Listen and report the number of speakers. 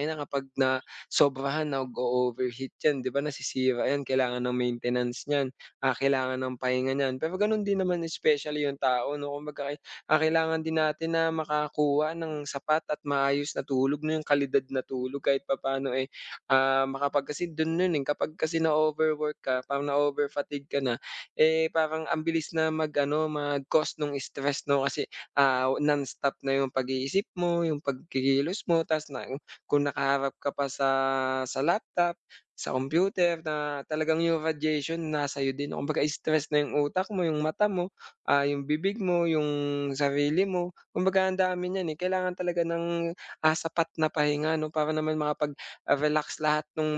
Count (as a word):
one